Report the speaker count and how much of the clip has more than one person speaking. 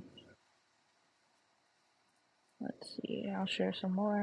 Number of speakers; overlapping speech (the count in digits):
1, no overlap